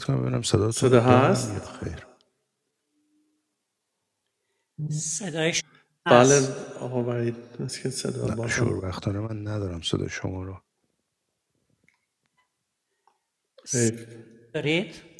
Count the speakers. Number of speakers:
three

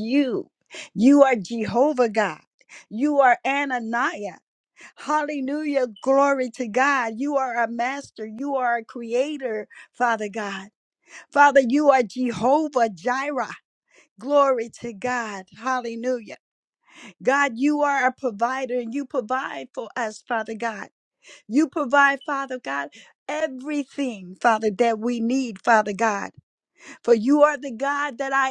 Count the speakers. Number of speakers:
one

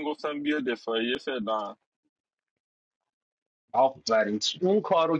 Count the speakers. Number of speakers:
two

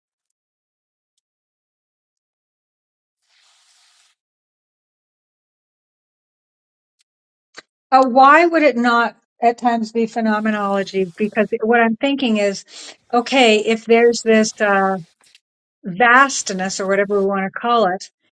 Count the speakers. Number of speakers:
one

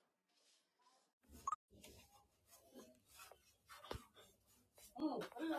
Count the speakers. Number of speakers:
zero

